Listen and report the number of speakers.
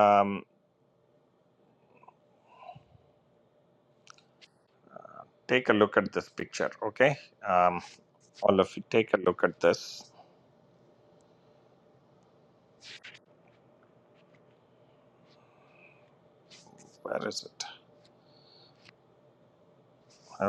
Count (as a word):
one